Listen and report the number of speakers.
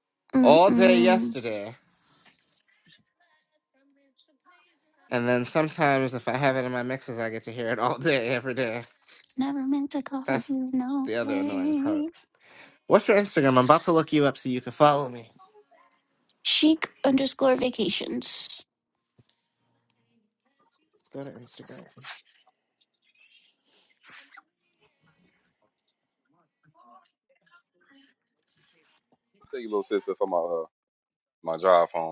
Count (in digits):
3